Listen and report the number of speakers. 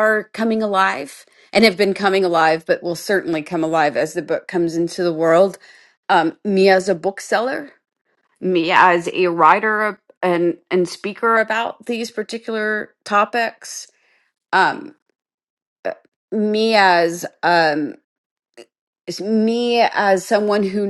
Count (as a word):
one